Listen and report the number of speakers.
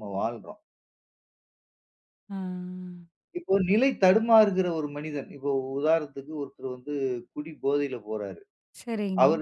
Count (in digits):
2